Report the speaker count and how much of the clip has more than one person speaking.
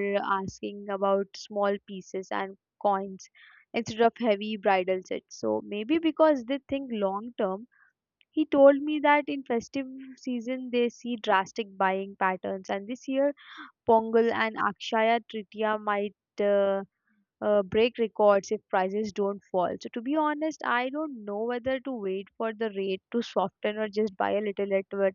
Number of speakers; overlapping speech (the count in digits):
1, no overlap